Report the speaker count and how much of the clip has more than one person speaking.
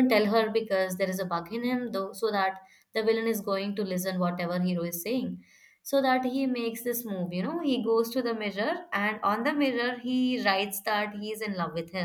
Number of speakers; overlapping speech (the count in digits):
1, no overlap